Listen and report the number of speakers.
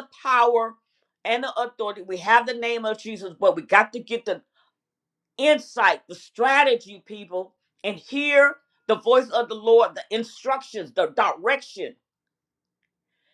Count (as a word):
one